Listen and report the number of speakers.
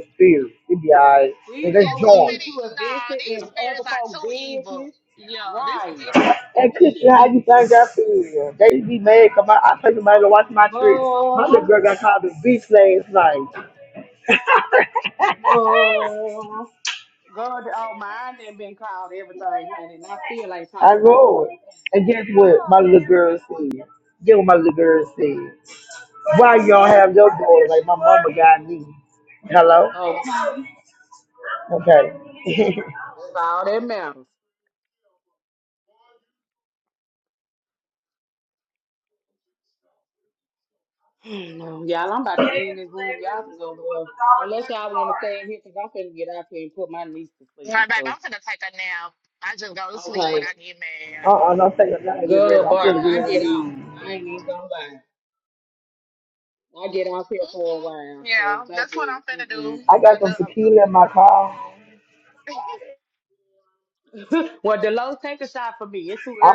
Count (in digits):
3